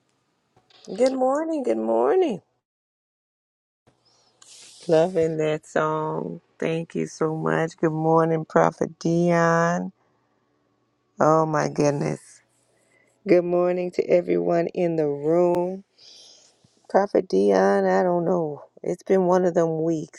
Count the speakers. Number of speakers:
1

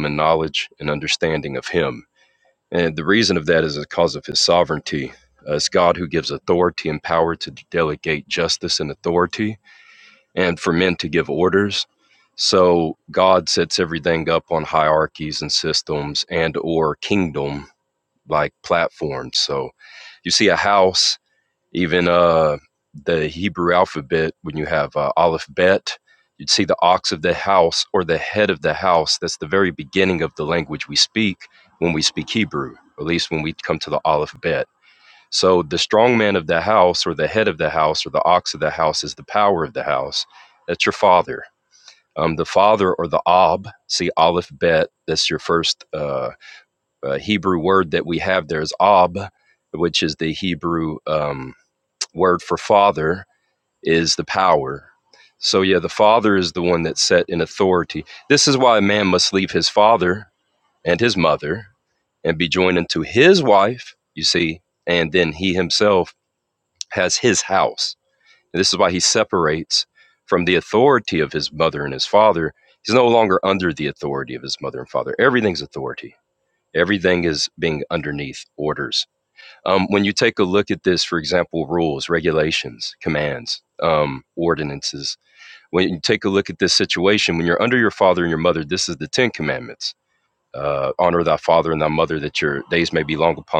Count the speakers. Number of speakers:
1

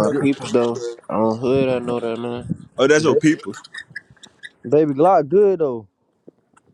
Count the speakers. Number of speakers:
3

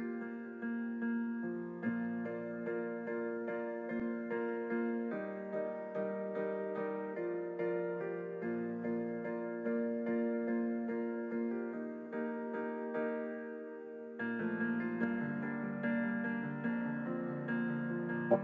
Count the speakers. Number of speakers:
0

